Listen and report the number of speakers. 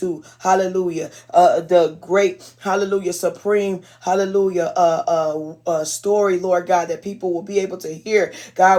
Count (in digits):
1